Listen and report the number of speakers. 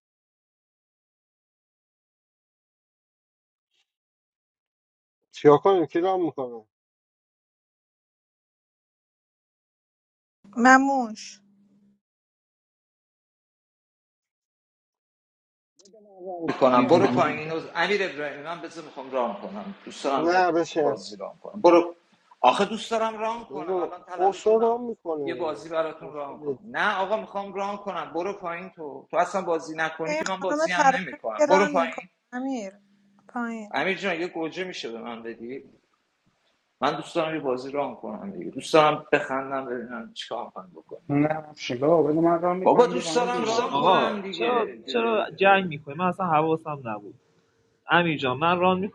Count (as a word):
five